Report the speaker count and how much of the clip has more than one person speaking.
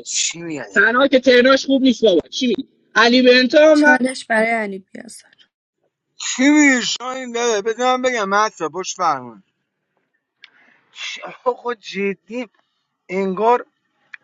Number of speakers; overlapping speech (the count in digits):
3, about 2%